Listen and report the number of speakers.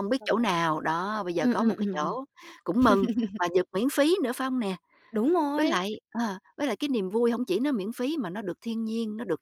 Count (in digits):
2